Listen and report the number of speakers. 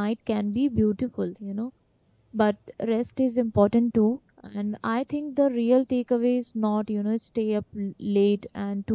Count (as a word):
one